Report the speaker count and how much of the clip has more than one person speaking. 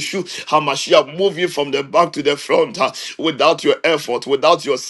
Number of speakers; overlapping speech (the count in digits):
1, no overlap